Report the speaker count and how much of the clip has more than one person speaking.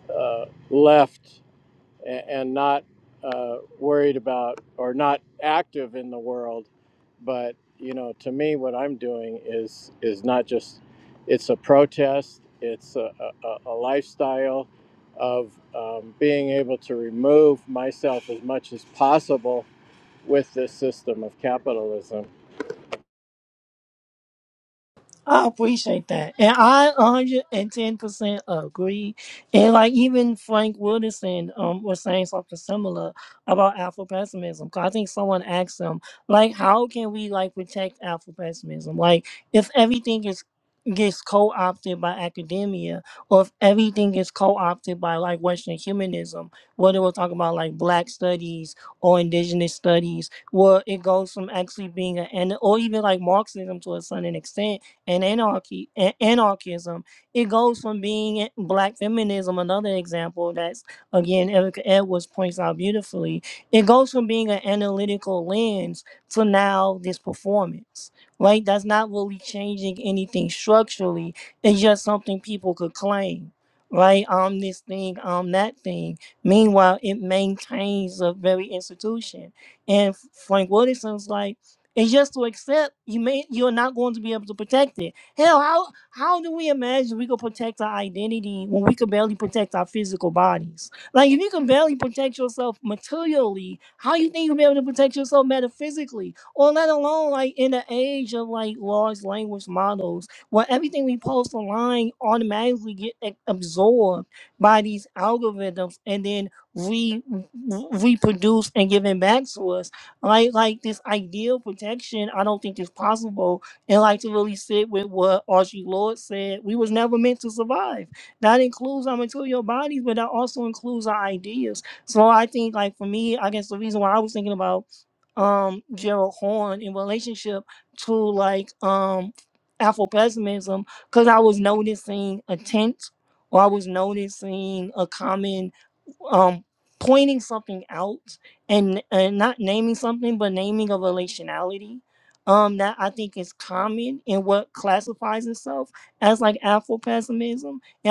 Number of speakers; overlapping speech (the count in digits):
2, no overlap